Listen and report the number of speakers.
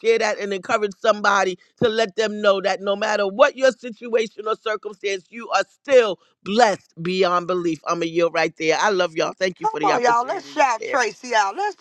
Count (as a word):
two